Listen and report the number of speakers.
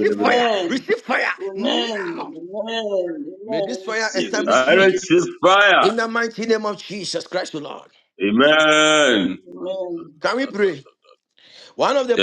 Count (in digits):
3